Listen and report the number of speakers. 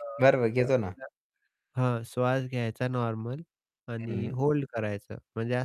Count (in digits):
2